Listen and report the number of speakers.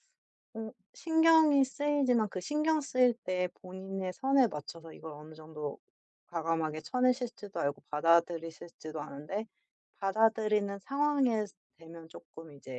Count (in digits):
1